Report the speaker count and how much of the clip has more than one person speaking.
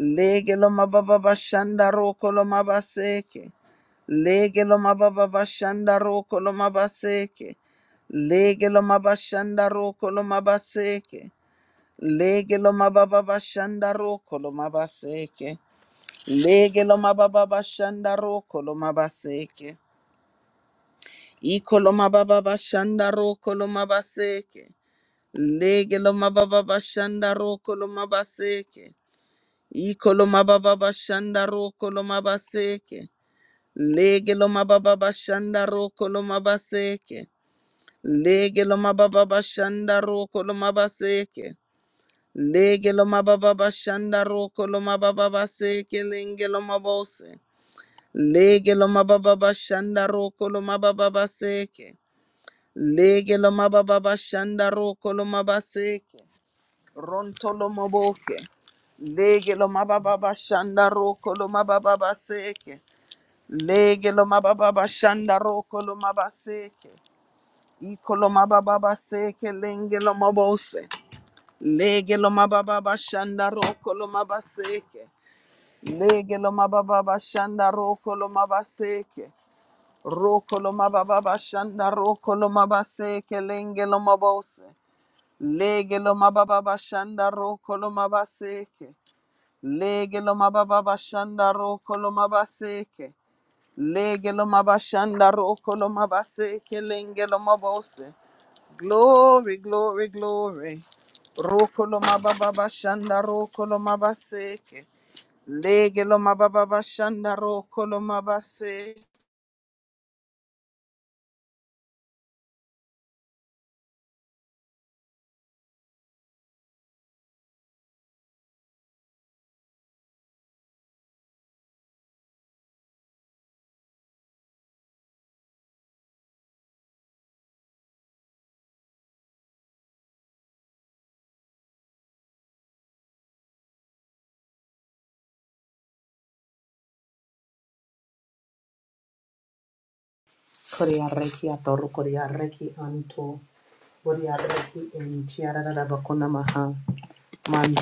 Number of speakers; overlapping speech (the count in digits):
2, no overlap